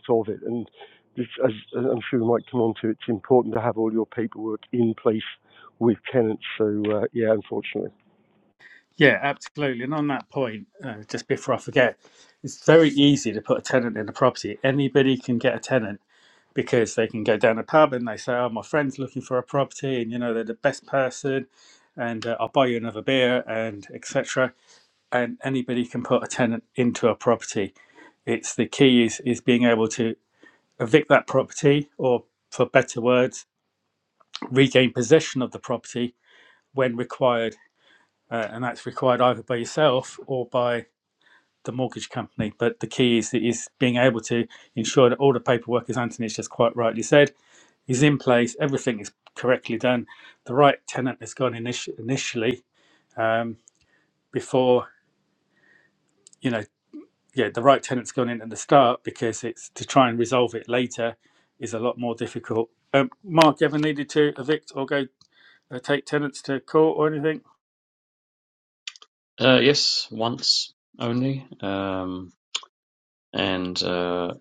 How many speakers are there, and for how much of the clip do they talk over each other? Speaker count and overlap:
3, no overlap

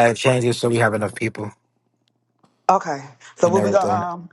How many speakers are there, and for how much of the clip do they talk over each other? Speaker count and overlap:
2, about 14%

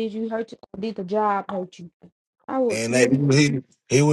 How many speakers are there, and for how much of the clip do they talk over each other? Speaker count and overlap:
2, about 13%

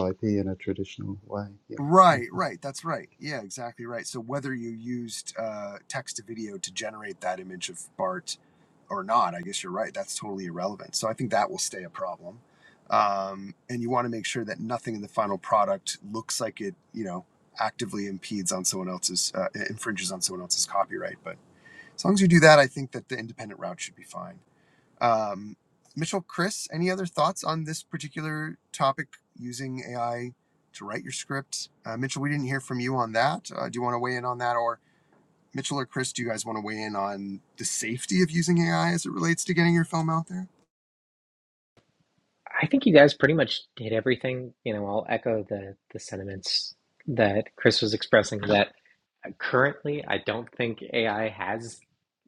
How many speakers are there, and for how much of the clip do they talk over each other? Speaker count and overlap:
3, no overlap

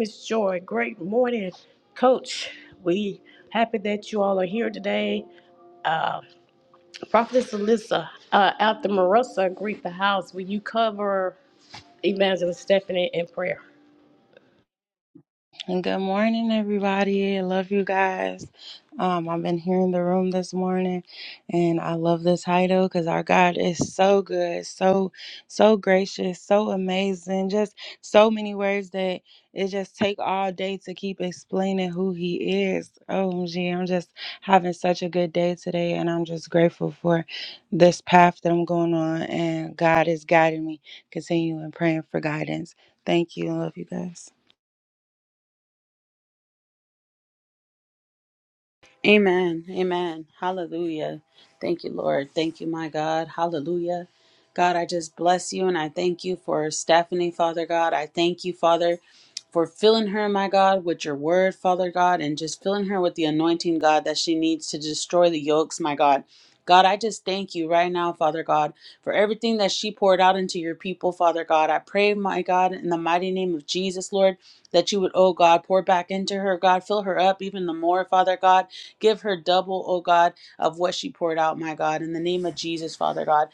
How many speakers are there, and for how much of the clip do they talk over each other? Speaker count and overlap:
3, no overlap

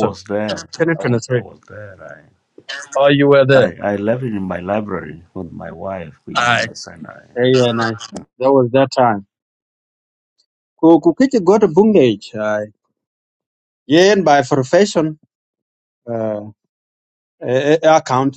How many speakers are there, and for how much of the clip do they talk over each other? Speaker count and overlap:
2, about 6%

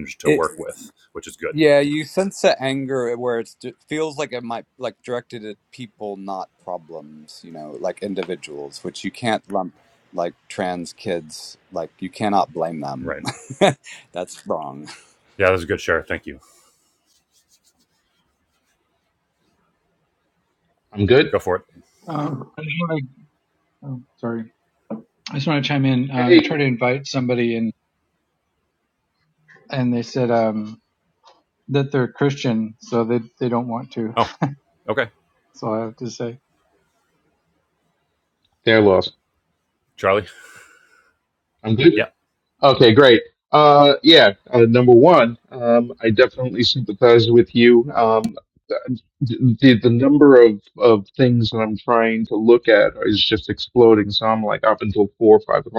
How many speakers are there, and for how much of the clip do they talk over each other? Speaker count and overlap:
4, about 1%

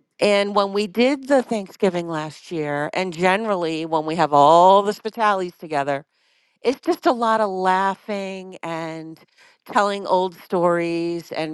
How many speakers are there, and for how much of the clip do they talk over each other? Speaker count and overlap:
1, no overlap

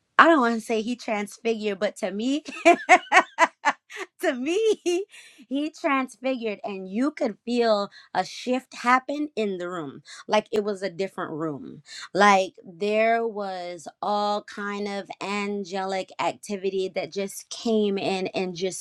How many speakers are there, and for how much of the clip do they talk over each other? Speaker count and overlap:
1, no overlap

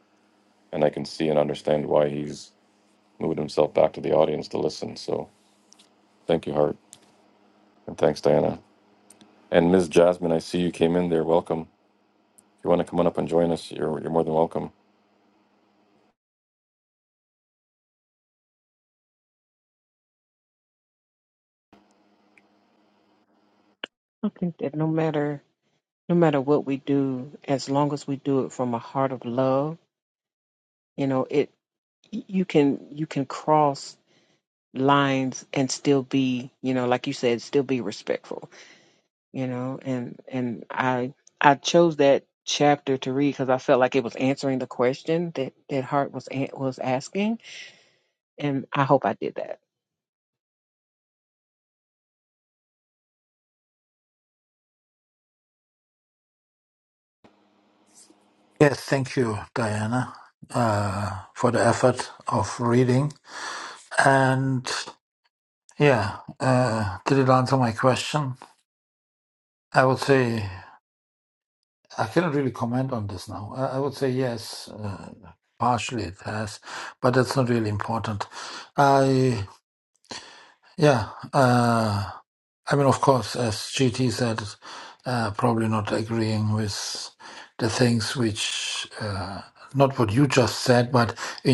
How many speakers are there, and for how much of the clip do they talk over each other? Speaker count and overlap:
3, no overlap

